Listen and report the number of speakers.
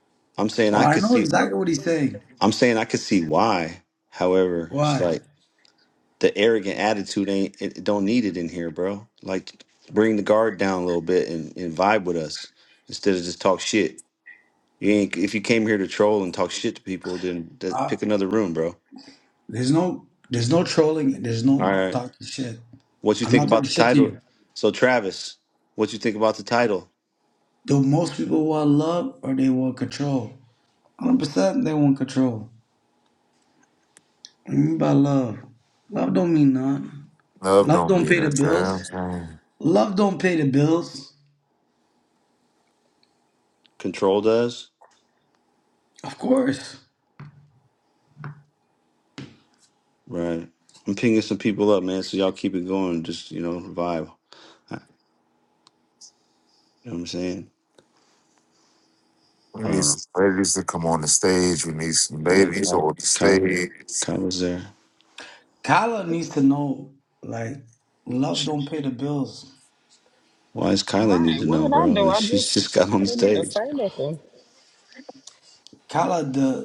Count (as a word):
four